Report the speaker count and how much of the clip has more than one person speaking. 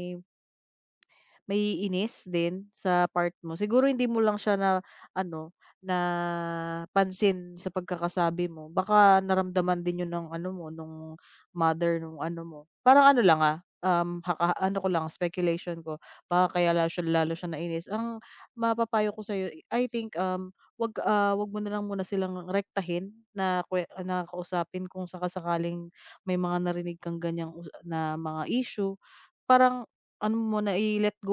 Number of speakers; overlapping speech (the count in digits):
1, no overlap